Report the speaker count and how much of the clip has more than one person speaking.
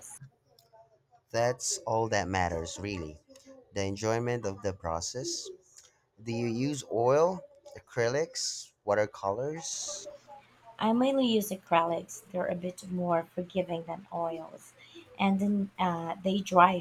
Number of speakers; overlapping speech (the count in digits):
2, no overlap